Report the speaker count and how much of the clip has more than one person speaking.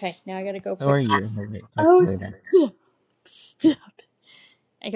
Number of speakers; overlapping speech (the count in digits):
2, about 14%